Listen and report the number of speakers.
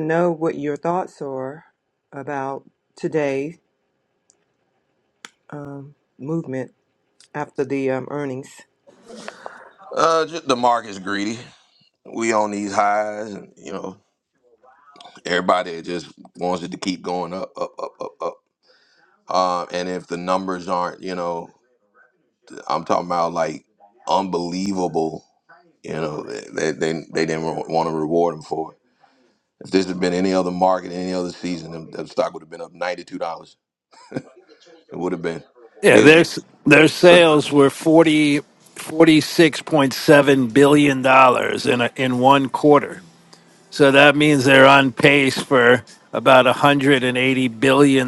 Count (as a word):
three